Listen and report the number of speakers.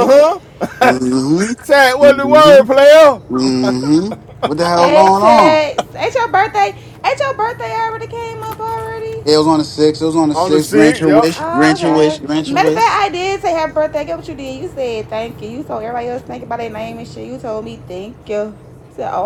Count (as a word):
three